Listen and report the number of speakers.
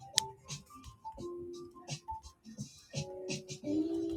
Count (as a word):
zero